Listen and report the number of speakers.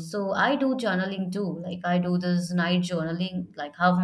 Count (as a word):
one